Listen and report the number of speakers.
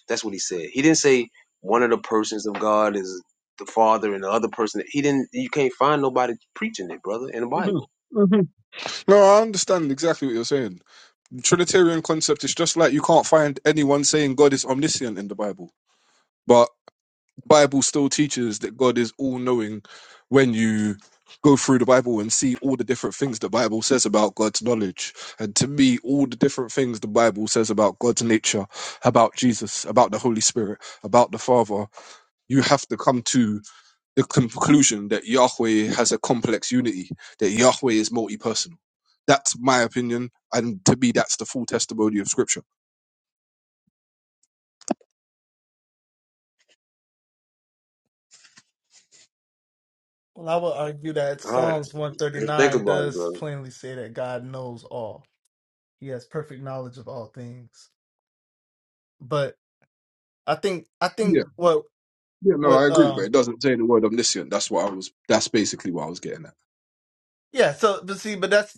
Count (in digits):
3